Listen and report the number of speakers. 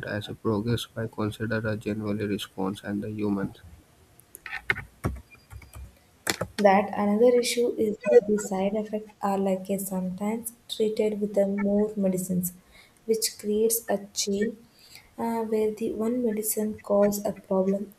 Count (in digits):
2